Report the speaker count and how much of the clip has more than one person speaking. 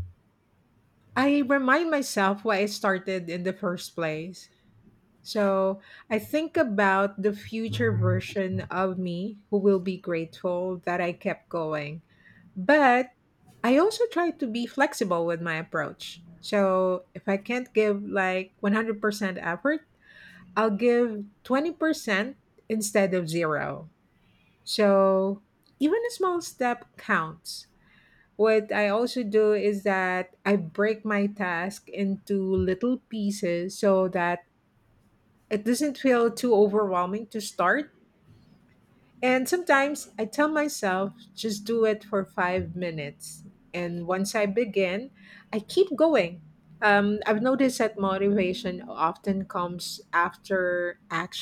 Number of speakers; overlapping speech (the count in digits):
1, no overlap